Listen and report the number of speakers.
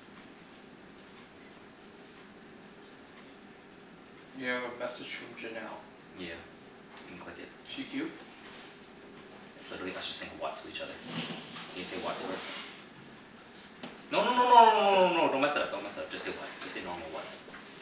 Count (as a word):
two